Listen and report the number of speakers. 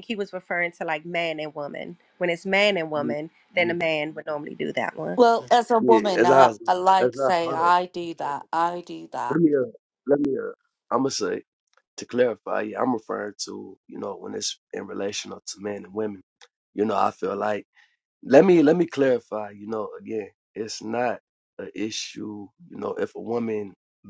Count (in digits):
3